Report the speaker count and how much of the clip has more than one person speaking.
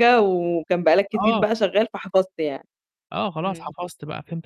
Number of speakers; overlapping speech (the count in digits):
2, about 11%